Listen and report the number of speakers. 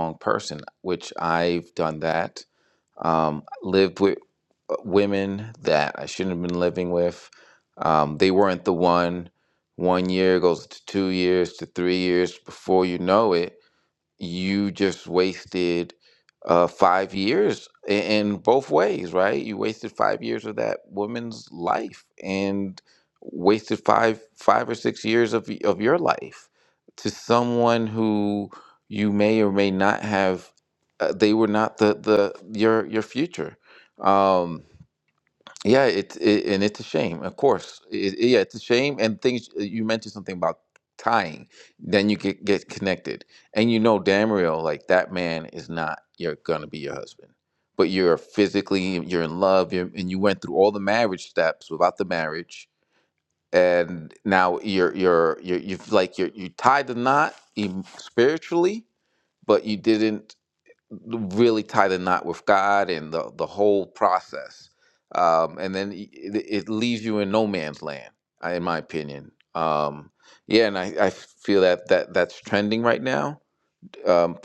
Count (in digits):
1